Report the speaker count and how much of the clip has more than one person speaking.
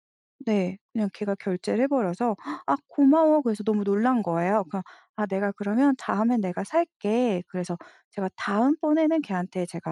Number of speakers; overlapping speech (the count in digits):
1, no overlap